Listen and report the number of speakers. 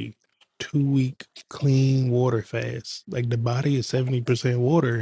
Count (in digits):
1